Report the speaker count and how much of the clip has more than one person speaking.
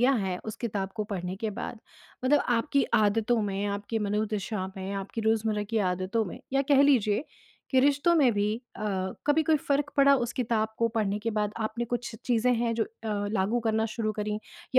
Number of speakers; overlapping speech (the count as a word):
one, no overlap